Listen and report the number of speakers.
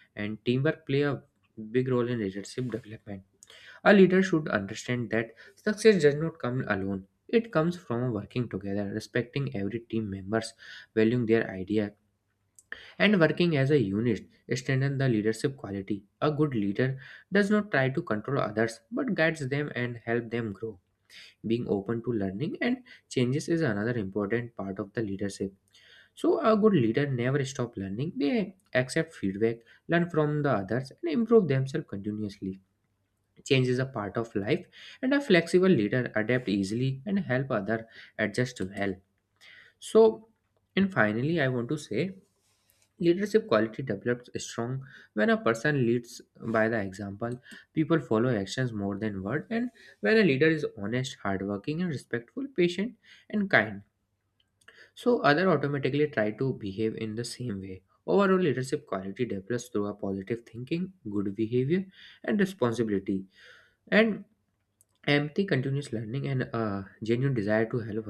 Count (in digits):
1